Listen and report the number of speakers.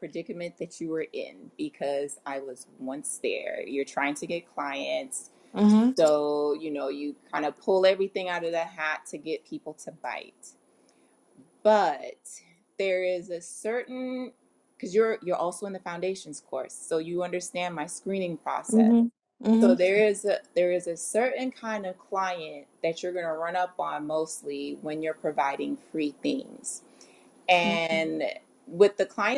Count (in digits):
2